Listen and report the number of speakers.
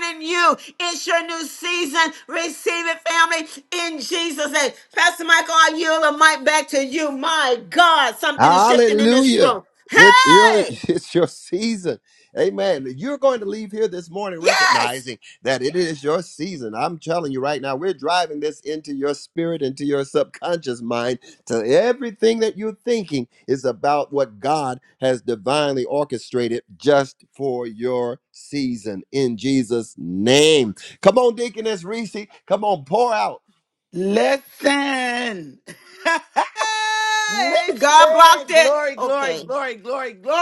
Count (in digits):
3